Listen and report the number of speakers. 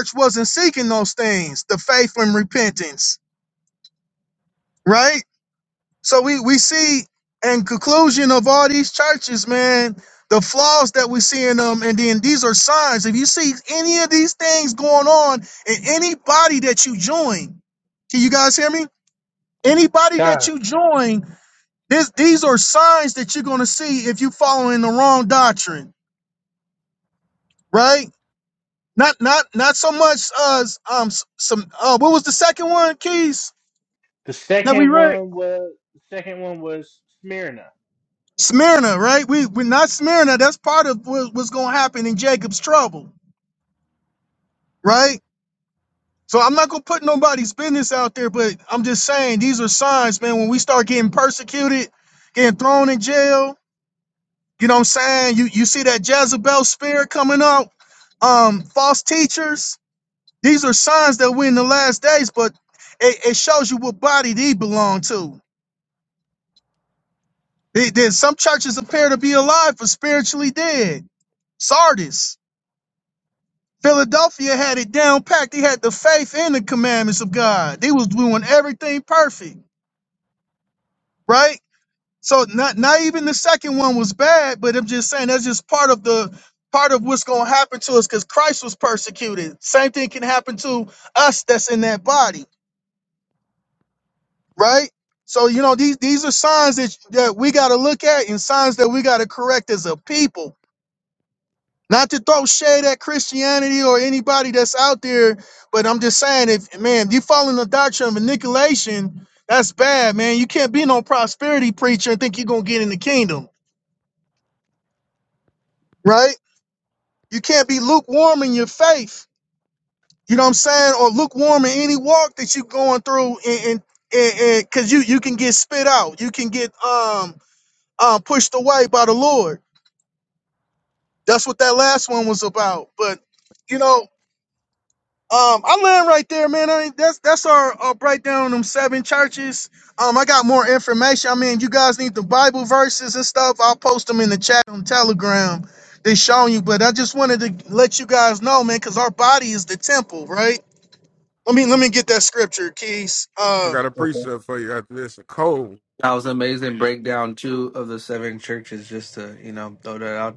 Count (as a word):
four